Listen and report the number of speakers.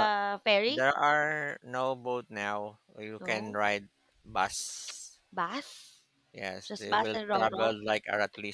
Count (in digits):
2